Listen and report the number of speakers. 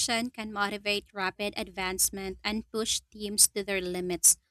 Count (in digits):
1